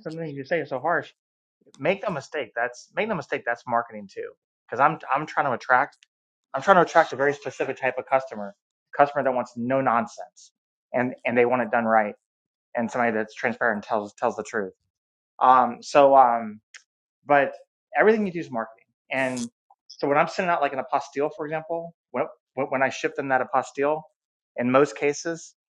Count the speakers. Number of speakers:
1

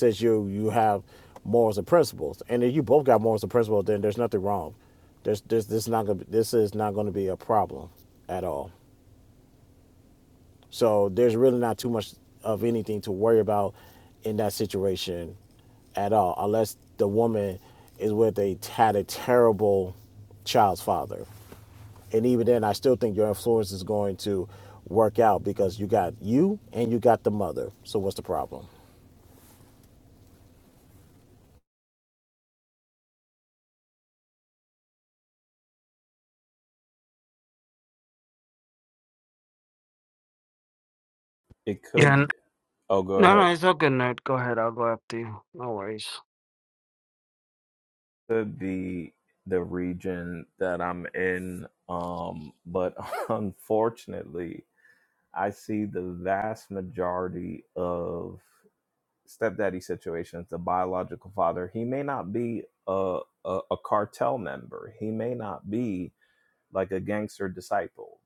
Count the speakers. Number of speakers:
3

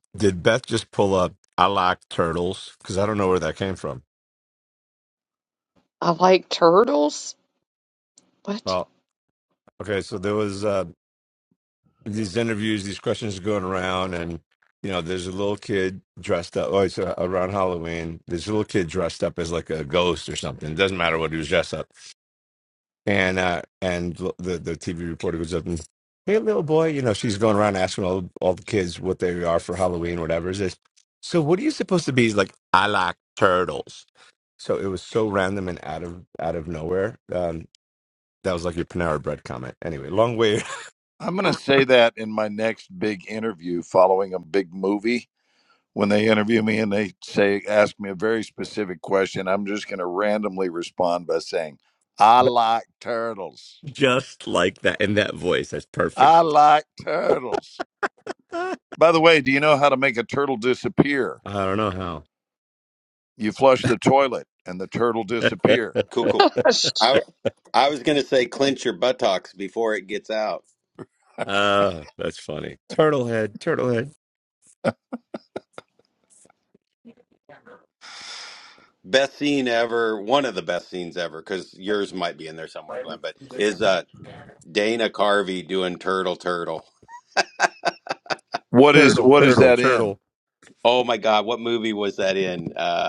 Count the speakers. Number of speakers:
4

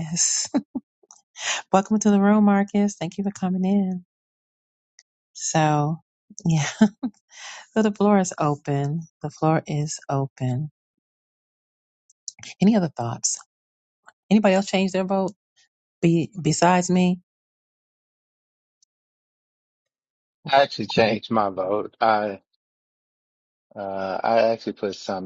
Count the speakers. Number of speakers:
2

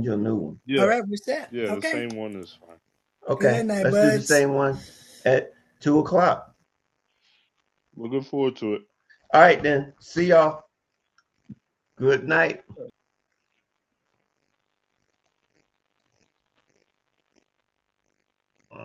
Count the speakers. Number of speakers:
3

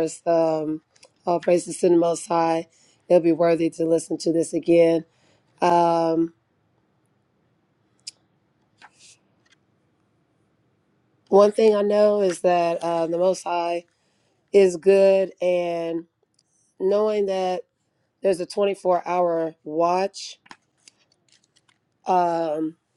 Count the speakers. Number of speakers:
1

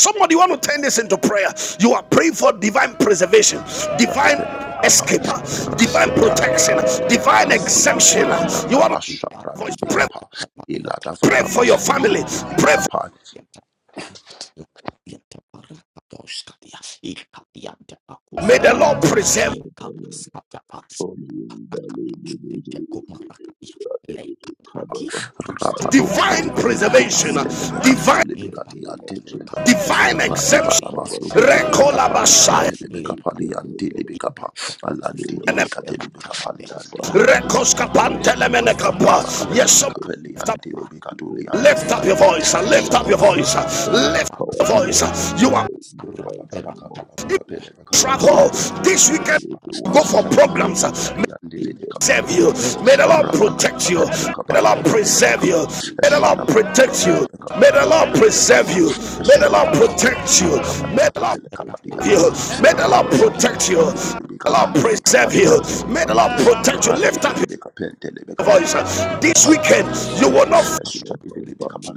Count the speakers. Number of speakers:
4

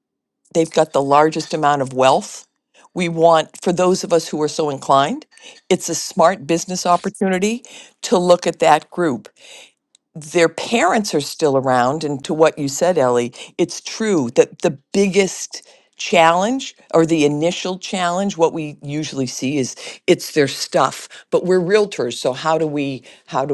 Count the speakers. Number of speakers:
1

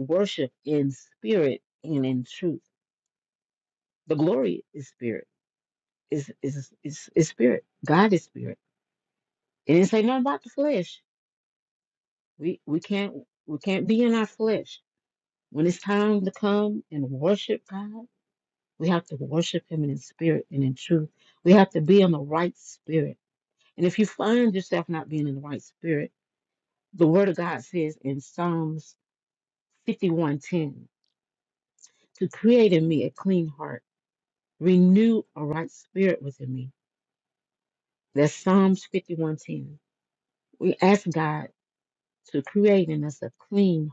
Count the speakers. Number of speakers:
1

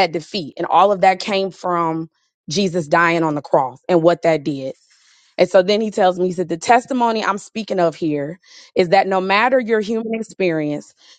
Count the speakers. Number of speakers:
1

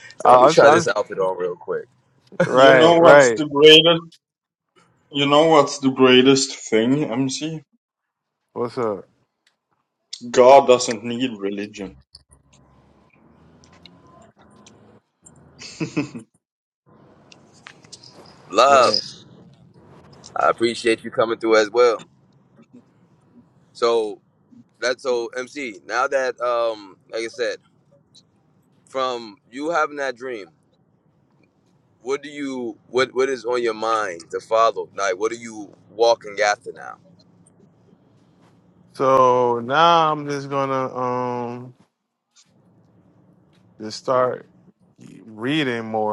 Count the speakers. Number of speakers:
3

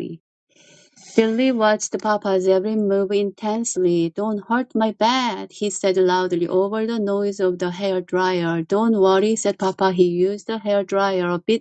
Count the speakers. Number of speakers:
1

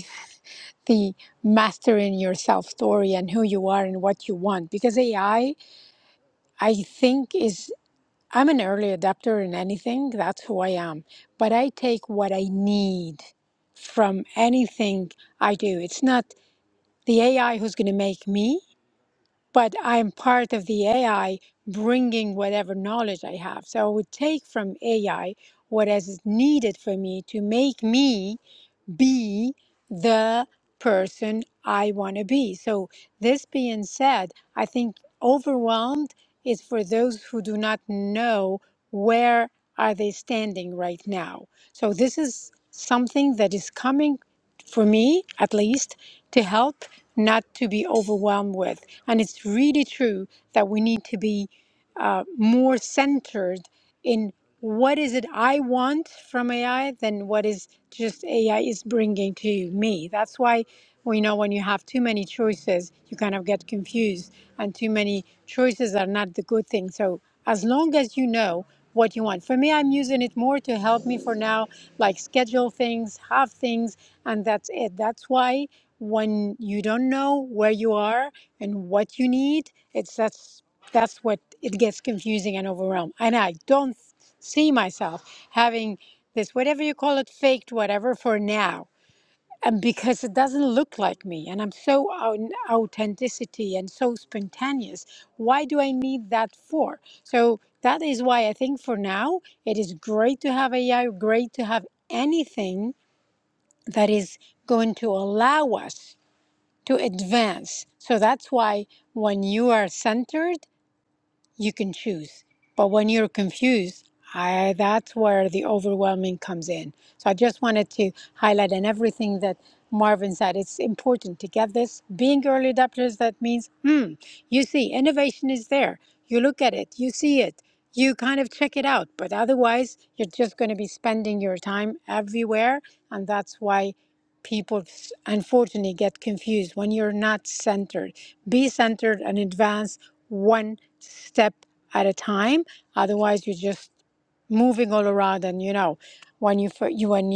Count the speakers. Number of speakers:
1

